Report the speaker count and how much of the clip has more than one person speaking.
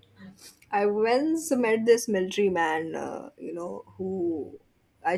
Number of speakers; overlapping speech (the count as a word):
one, no overlap